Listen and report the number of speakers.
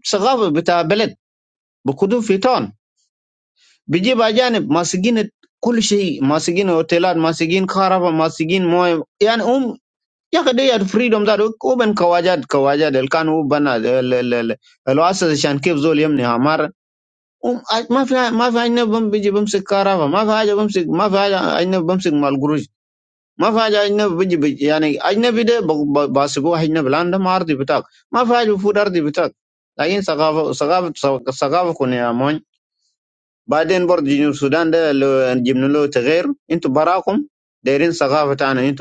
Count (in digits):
1